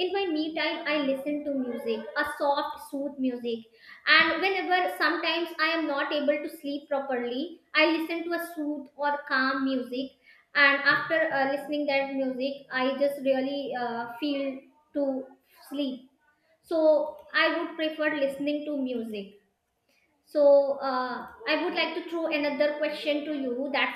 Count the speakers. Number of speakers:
one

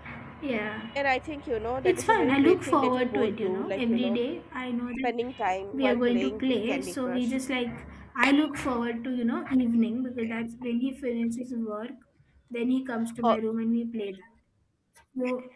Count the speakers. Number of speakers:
two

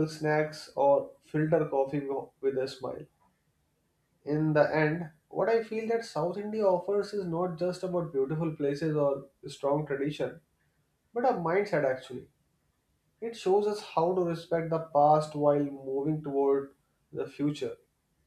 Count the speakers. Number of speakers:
one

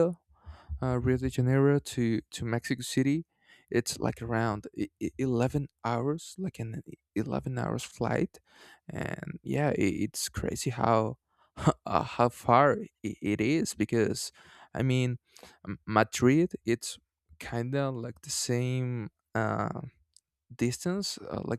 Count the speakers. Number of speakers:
one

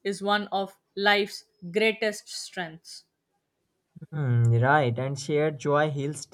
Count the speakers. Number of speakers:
two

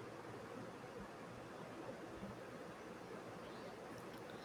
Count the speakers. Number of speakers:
zero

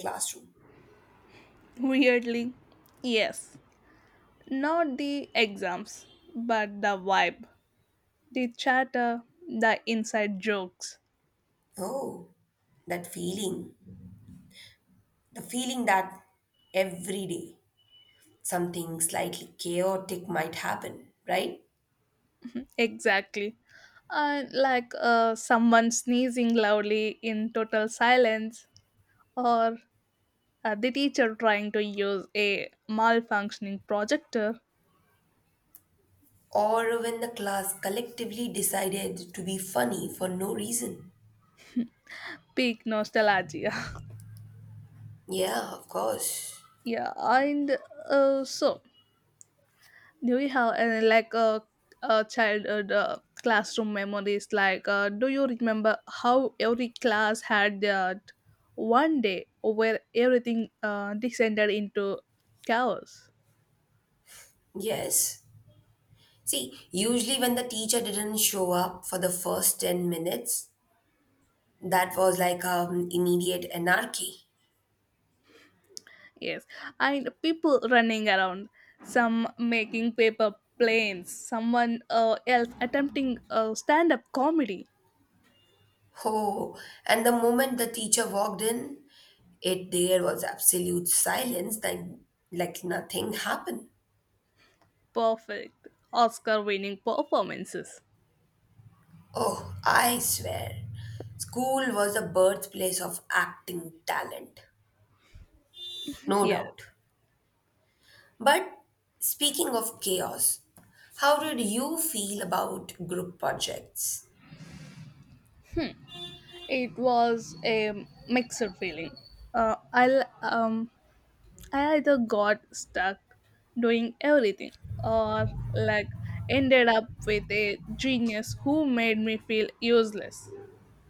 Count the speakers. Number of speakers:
two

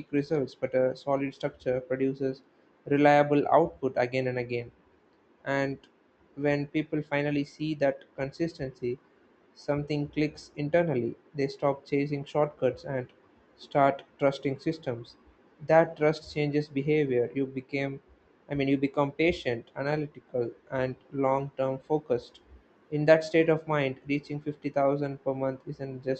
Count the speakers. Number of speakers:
one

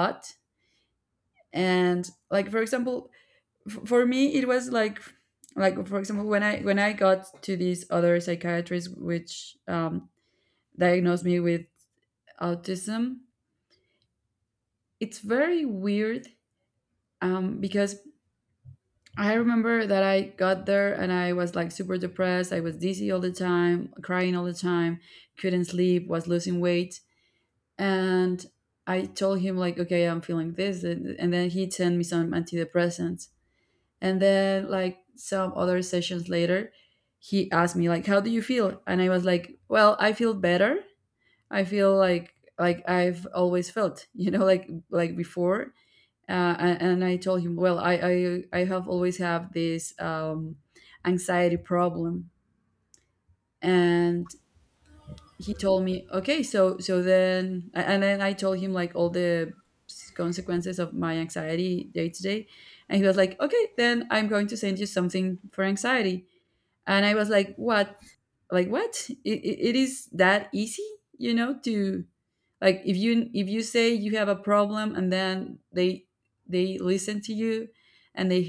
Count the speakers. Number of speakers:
one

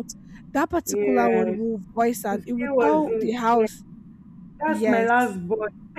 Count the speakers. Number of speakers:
two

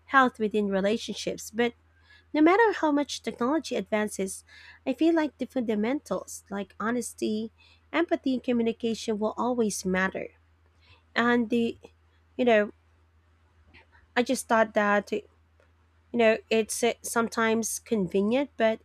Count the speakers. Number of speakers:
one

